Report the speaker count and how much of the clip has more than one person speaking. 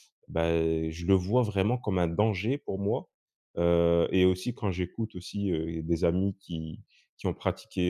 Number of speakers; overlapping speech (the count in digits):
1, no overlap